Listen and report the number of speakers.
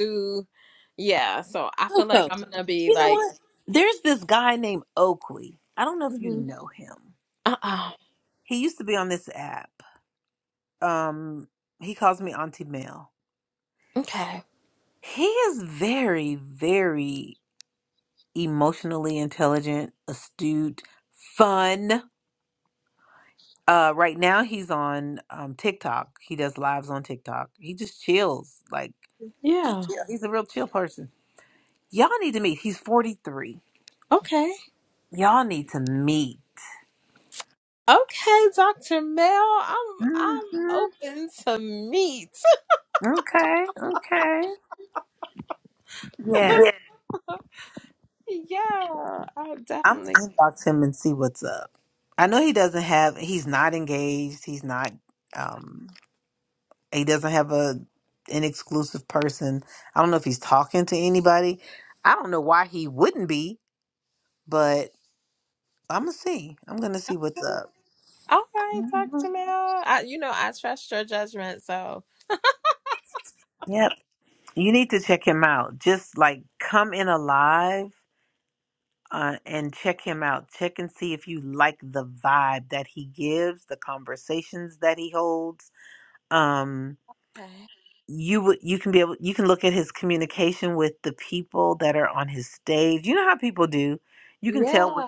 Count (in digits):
2